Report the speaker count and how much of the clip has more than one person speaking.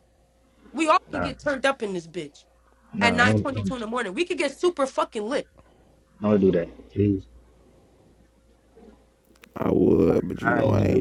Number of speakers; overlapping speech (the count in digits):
3, about 13%